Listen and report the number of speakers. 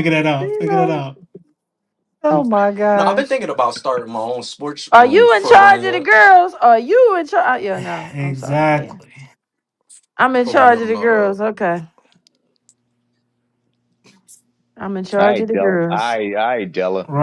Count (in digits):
4